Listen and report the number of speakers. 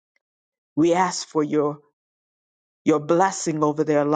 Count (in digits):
1